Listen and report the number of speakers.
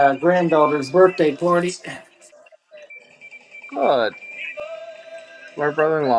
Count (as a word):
two